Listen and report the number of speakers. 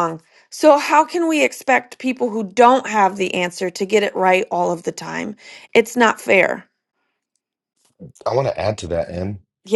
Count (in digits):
2